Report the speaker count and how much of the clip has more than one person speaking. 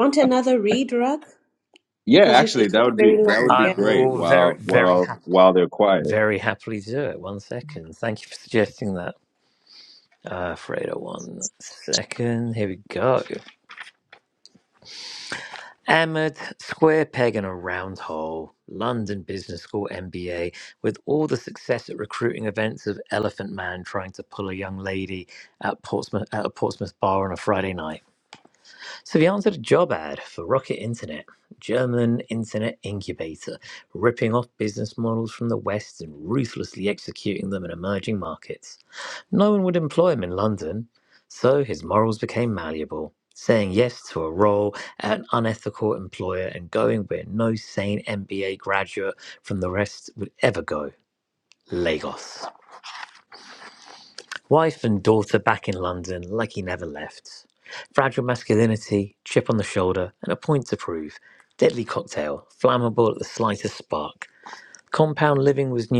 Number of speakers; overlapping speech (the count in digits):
3, about 5%